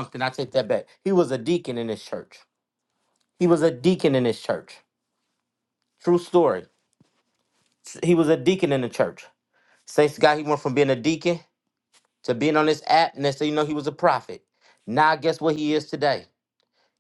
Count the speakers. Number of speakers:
1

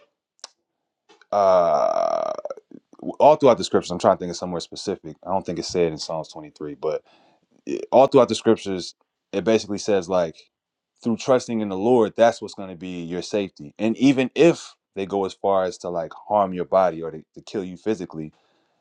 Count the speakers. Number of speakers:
1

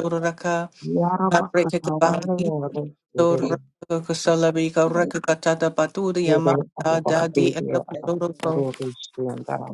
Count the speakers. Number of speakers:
2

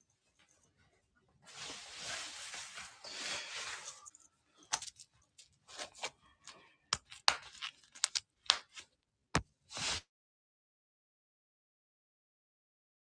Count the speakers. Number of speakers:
0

